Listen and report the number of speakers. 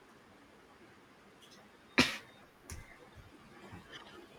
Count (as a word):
zero